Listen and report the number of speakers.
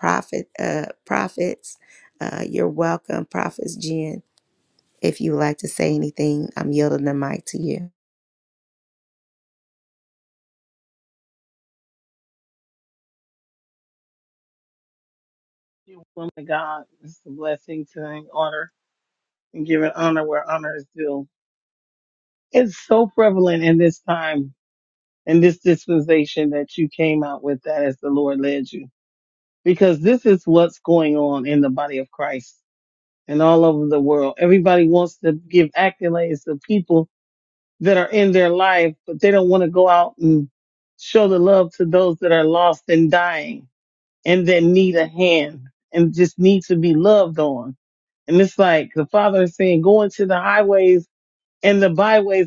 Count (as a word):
two